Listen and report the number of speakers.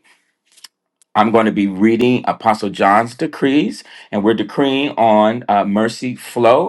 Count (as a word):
one